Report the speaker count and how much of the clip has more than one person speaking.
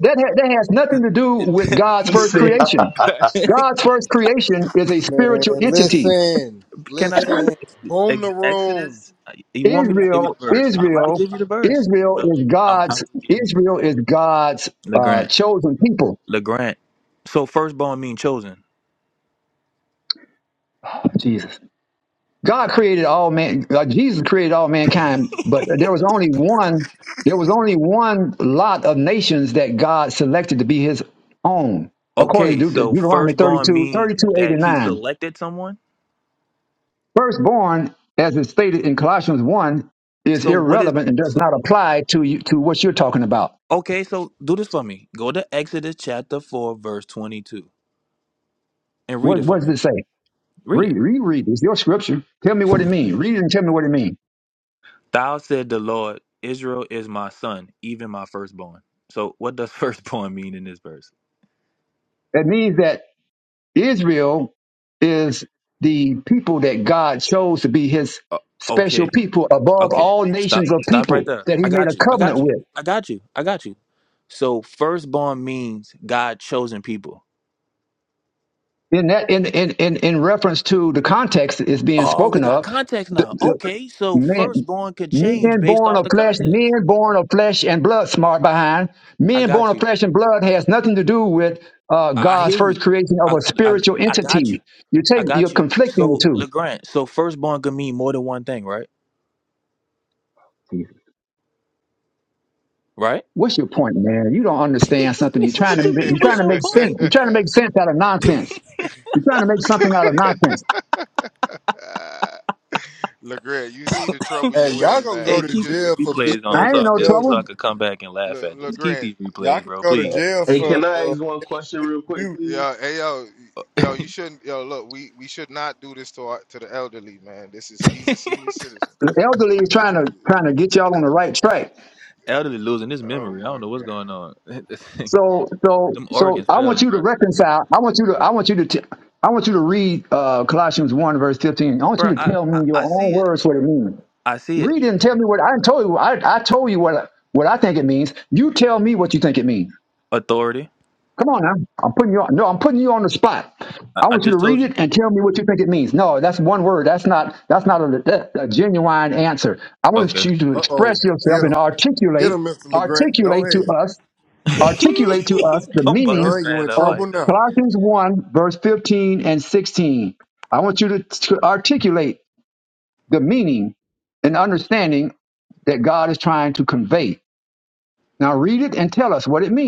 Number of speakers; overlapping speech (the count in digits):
5, about 20%